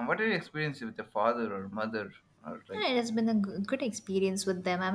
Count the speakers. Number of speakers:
2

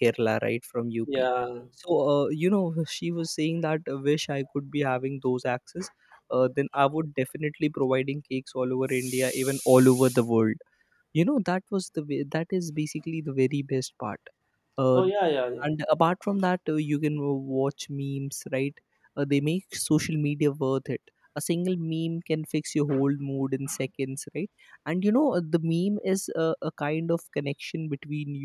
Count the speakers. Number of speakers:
2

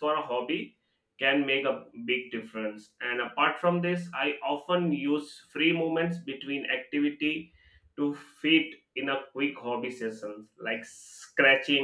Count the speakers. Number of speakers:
1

